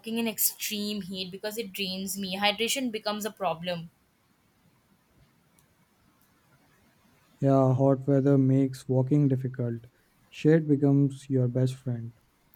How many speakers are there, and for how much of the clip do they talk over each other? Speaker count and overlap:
2, no overlap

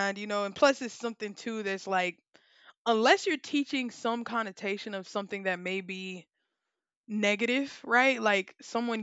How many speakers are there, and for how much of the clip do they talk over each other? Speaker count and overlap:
1, no overlap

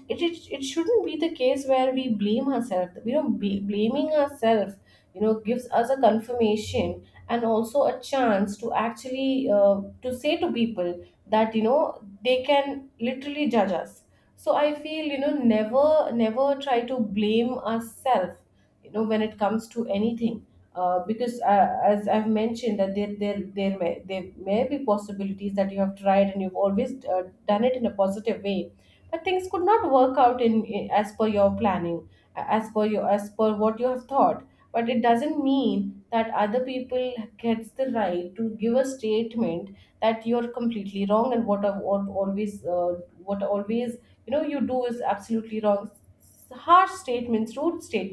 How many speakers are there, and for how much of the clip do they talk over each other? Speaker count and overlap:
1, no overlap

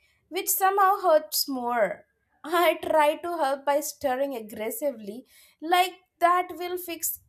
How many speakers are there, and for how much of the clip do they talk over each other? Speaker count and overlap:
1, no overlap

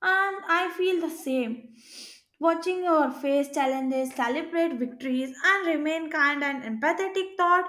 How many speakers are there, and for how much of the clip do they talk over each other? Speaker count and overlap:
1, no overlap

